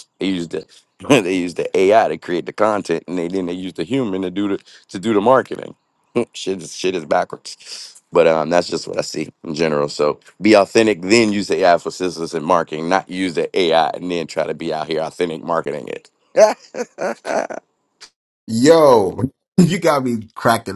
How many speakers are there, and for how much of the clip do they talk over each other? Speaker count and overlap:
2, no overlap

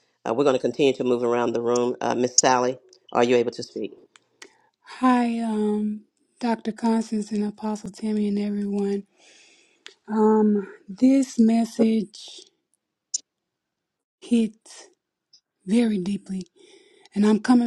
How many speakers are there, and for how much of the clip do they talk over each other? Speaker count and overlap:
2, no overlap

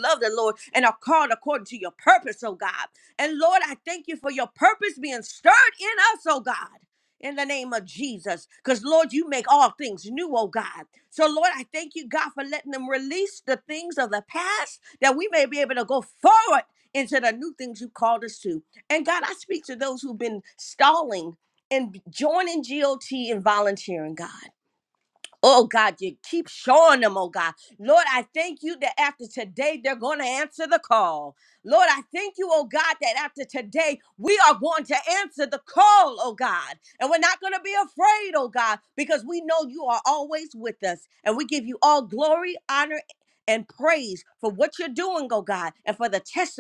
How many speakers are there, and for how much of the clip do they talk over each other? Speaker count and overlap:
1, no overlap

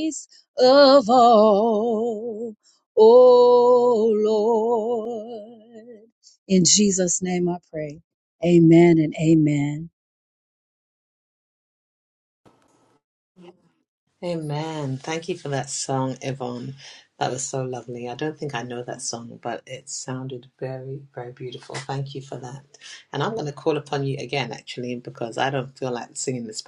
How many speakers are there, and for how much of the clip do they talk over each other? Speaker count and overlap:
2, no overlap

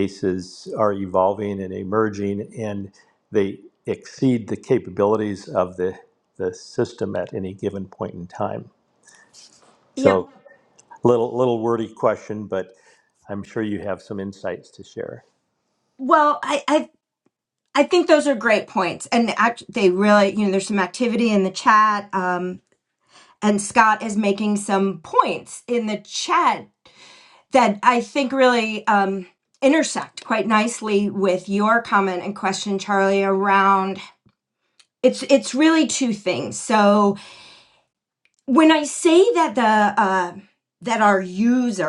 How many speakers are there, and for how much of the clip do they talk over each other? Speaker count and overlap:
2, under 1%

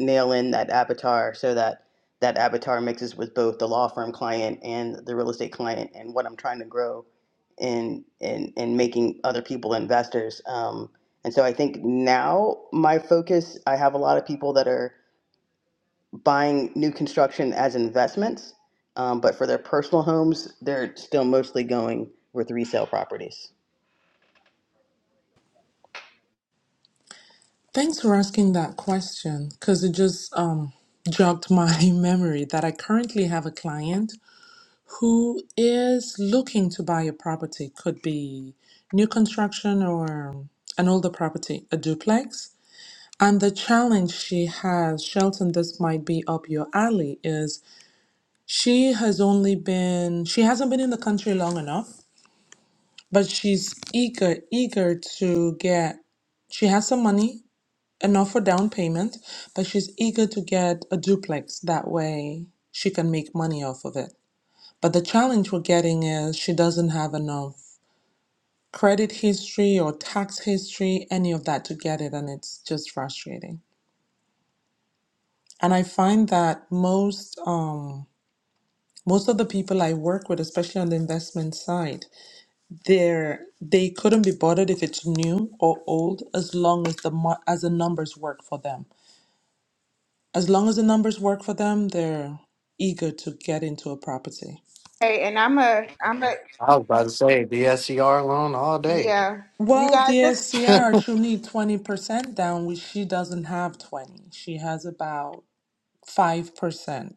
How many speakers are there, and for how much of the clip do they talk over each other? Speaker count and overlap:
4, about 1%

